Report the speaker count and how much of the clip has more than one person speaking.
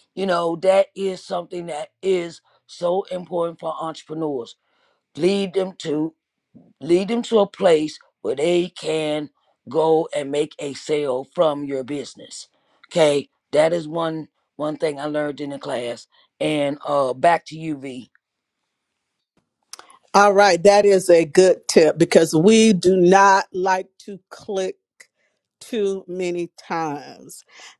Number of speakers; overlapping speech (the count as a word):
two, no overlap